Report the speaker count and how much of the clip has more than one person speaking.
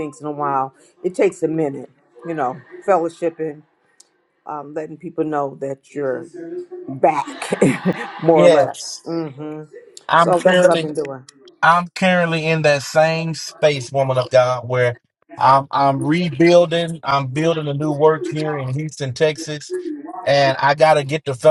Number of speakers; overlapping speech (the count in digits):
2, about 4%